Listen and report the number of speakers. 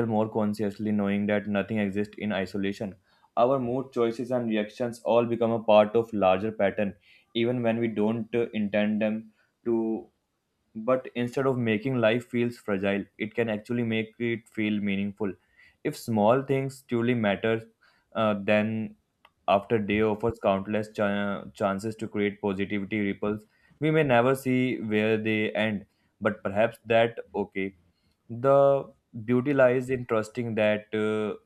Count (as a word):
one